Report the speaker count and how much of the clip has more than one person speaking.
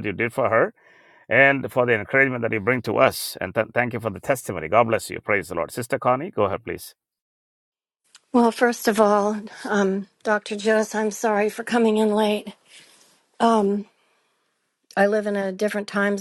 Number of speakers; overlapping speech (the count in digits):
2, no overlap